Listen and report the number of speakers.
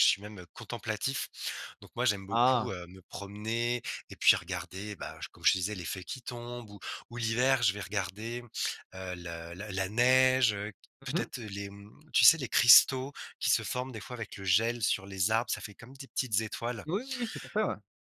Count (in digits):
2